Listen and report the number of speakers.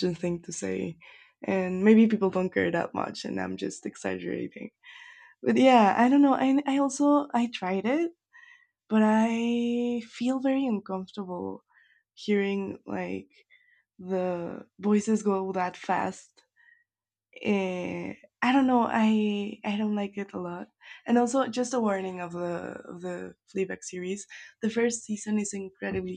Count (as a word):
one